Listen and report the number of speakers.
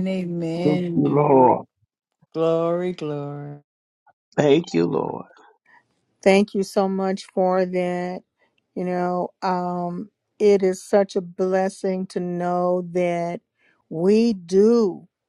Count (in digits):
3